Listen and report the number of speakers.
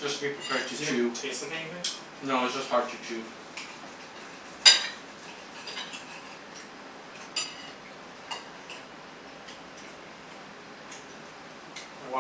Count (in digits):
2